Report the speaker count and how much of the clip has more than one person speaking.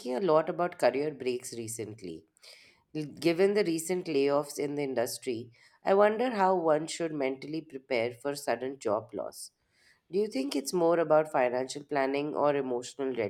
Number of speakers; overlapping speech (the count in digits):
1, no overlap